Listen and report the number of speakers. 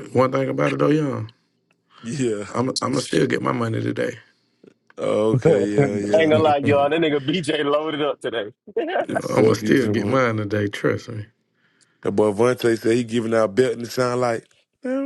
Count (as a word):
three